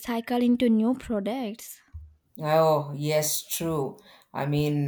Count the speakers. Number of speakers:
2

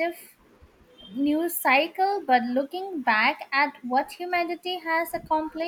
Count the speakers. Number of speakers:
1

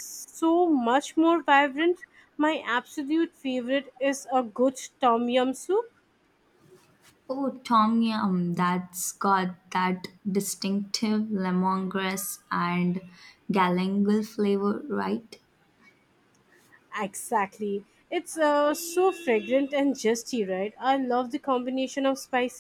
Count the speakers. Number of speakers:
2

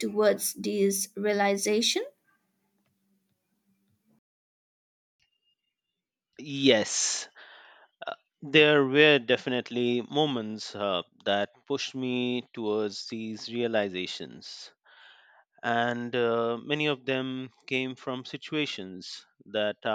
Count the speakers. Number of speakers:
2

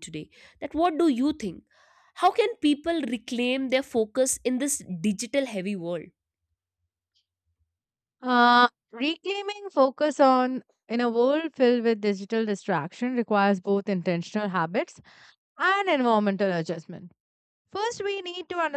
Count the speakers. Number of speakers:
2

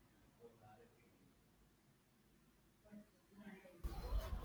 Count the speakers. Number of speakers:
0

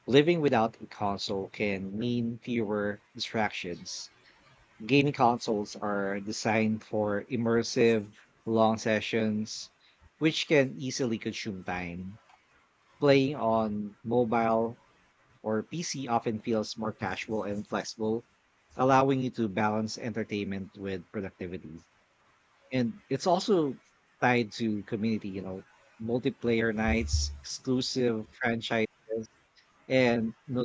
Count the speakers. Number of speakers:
1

